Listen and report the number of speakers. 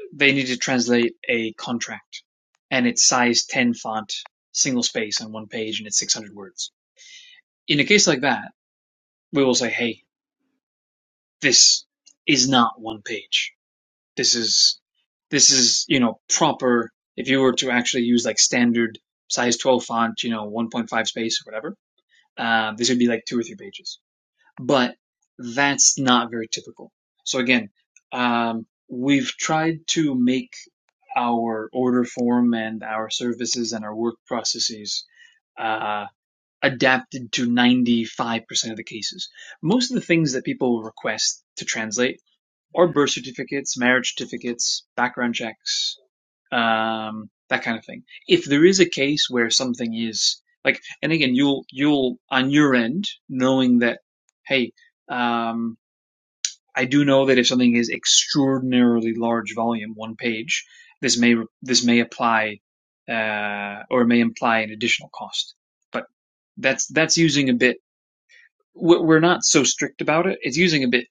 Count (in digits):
1